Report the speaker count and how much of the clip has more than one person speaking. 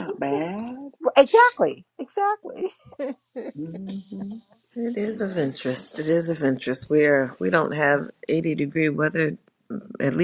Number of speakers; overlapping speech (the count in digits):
3, about 8%